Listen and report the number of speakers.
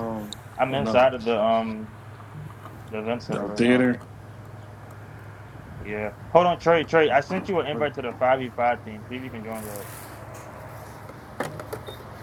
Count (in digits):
2